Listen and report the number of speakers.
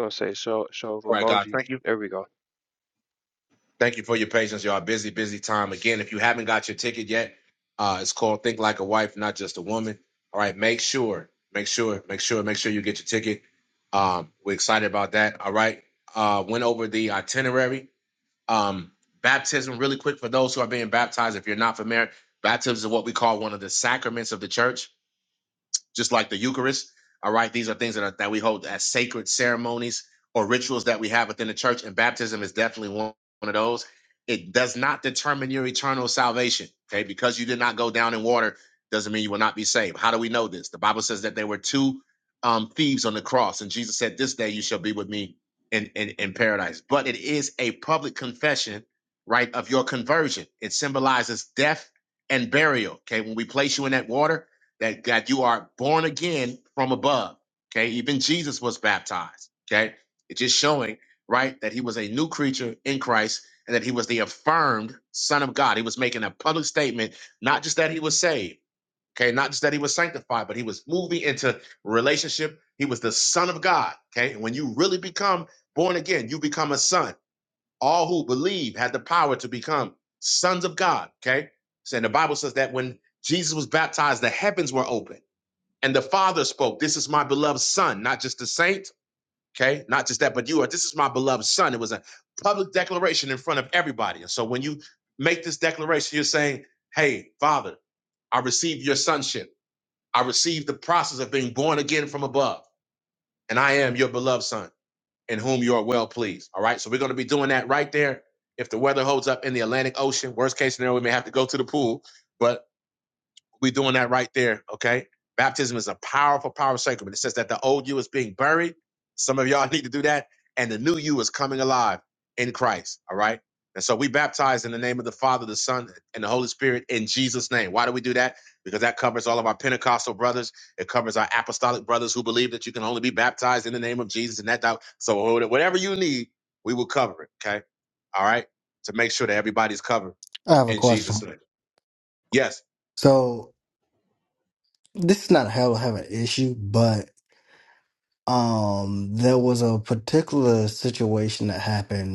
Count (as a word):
three